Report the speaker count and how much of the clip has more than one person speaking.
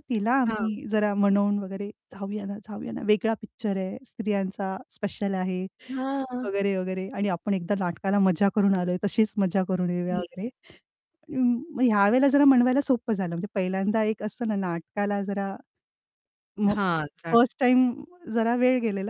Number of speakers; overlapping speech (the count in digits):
2, about 3%